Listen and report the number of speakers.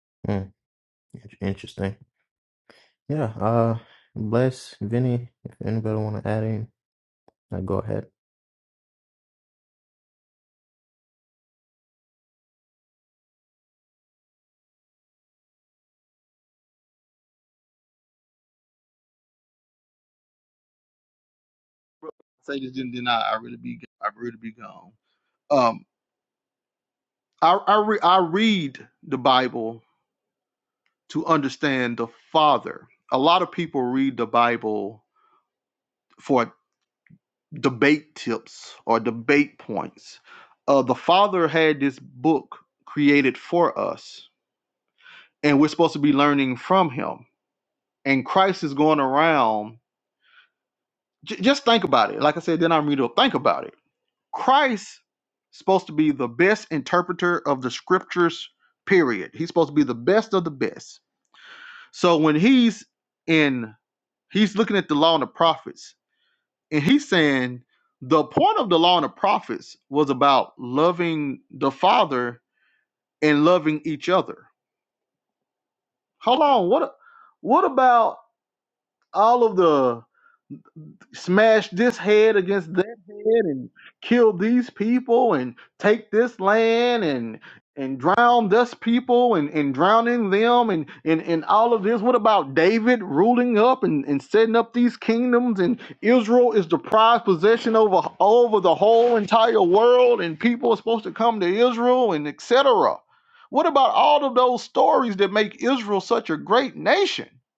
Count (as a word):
two